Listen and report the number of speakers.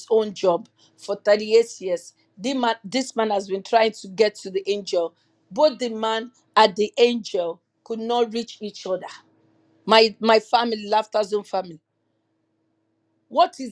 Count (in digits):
1